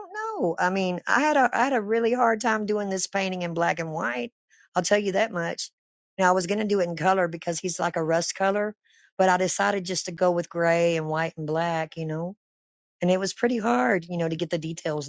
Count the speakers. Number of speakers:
1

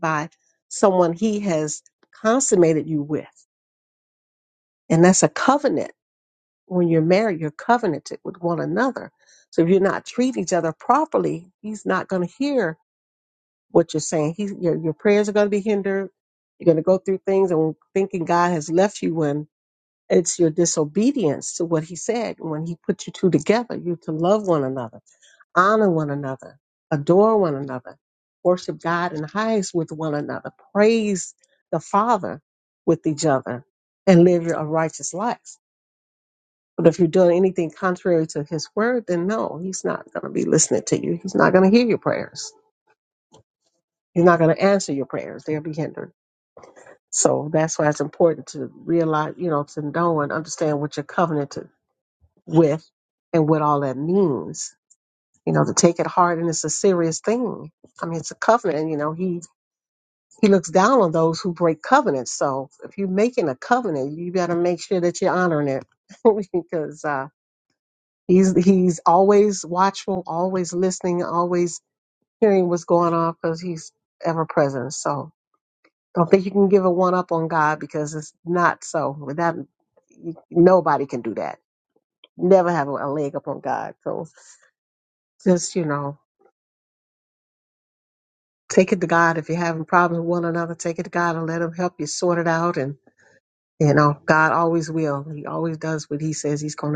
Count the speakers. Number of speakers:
1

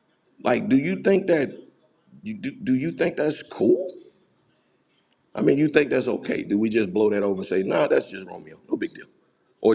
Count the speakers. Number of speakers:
1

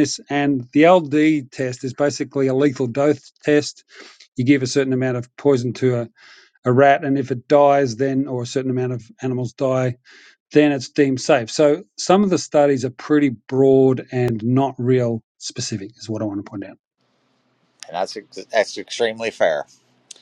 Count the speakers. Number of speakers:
2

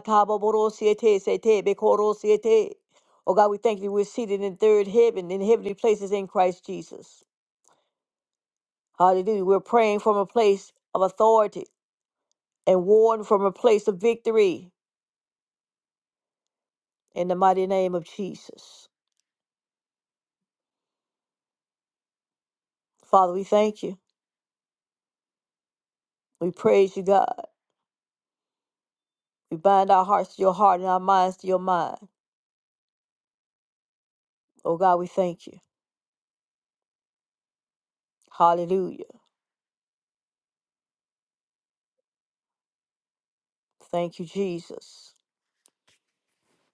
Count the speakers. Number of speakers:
1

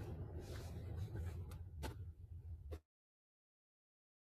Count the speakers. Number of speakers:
0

